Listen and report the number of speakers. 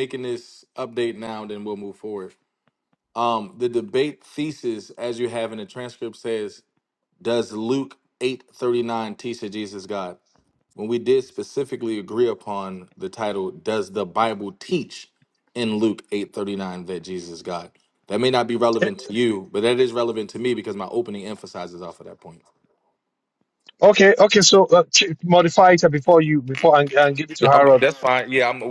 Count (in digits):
2